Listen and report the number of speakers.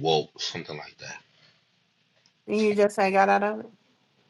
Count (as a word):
two